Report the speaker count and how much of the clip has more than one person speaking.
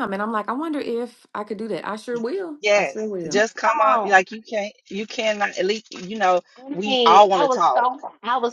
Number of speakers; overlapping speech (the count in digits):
3, about 28%